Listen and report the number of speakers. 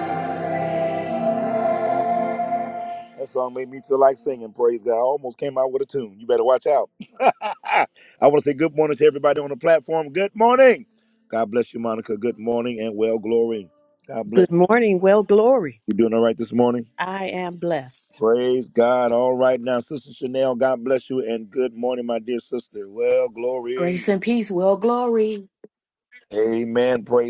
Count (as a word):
three